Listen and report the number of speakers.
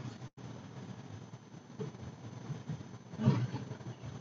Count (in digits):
0